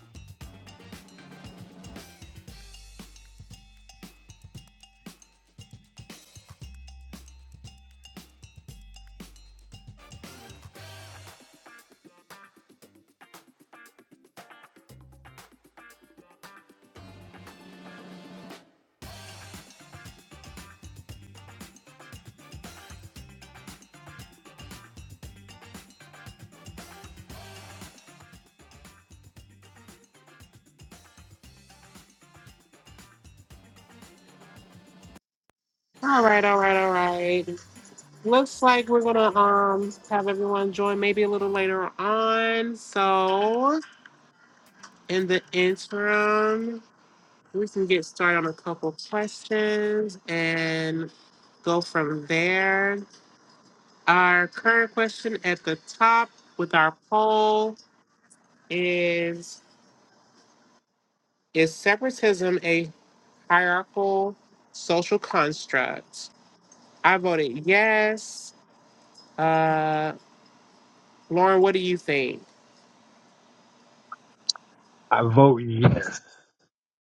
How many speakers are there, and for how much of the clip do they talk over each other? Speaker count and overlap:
2, no overlap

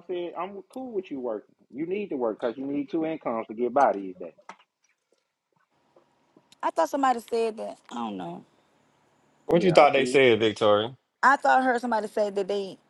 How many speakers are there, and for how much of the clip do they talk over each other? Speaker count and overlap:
3, about 5%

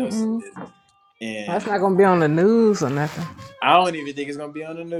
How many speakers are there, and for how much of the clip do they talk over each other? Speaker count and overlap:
2, about 12%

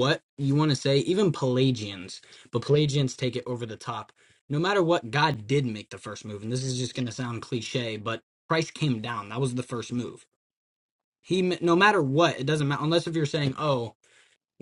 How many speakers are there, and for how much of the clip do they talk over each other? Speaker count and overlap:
1, no overlap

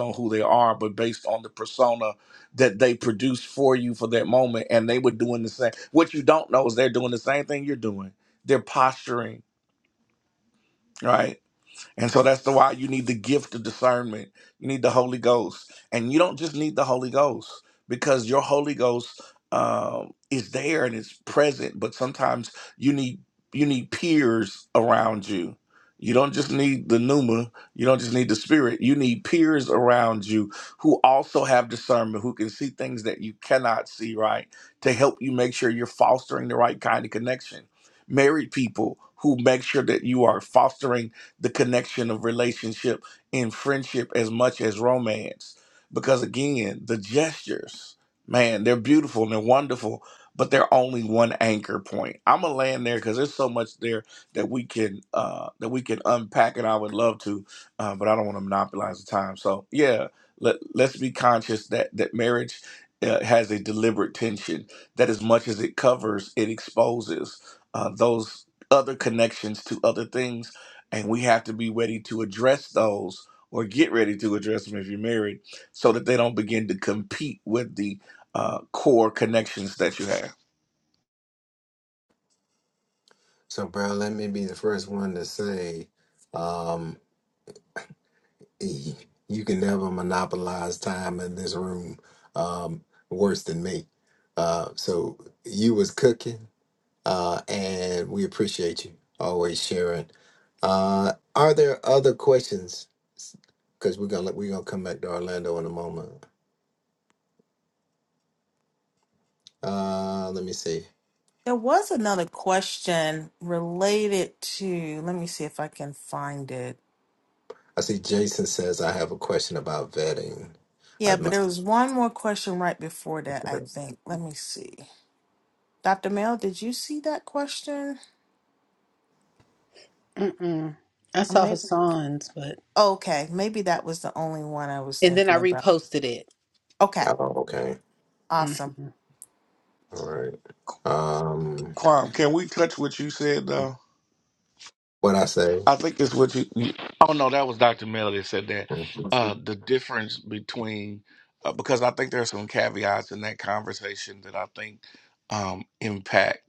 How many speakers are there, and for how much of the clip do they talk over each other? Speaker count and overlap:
4, about 1%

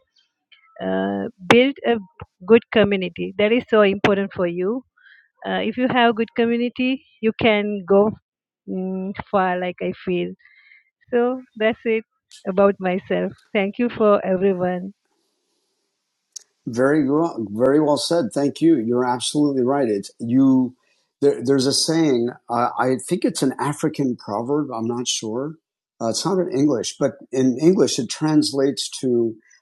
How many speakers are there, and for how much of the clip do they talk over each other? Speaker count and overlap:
2, no overlap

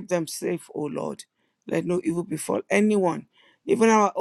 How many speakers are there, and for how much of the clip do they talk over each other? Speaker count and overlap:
1, no overlap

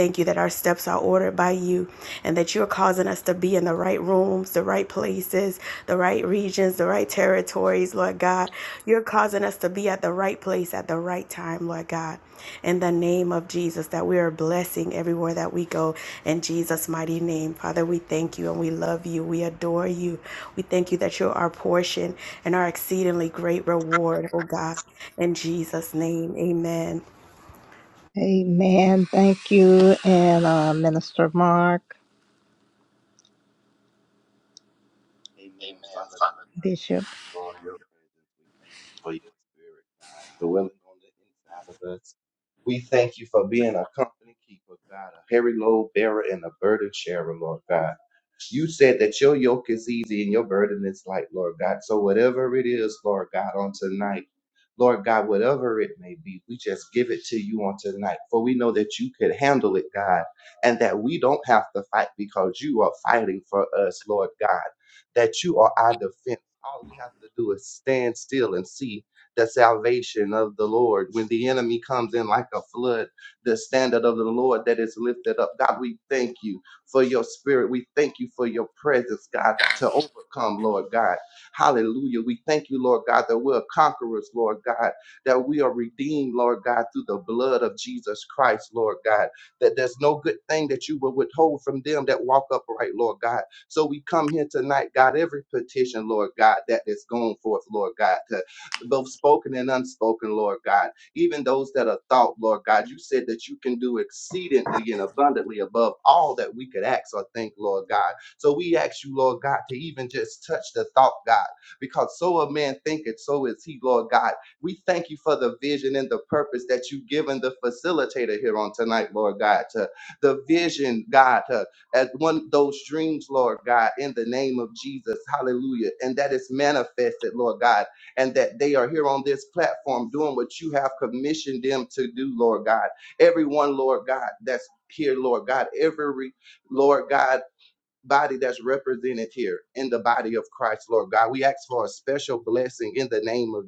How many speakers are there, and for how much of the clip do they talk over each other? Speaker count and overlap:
3, no overlap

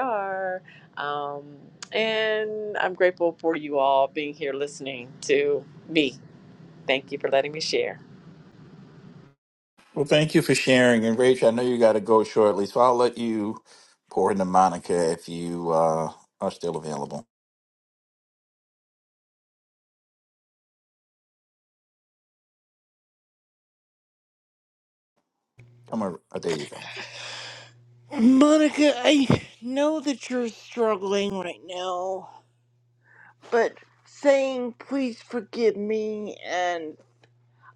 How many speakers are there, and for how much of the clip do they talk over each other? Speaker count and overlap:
3, no overlap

